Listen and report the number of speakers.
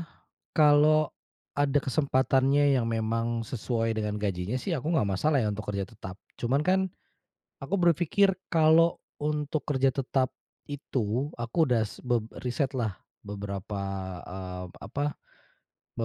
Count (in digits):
1